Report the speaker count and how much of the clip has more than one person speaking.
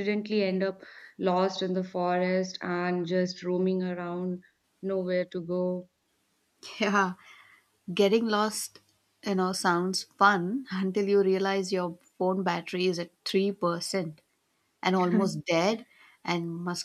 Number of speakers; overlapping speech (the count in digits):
2, no overlap